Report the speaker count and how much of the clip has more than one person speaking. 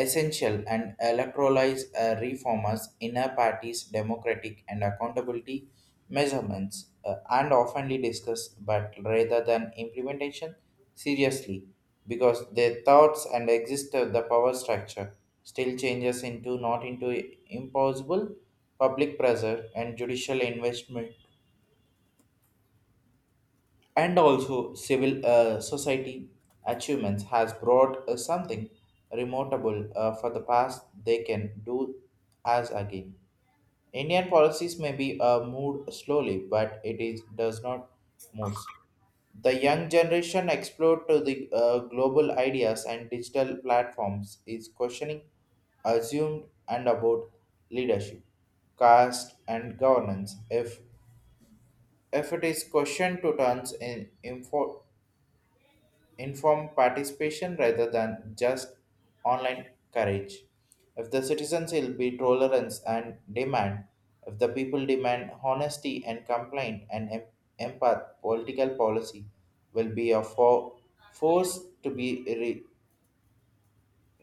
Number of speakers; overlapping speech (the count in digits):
1, no overlap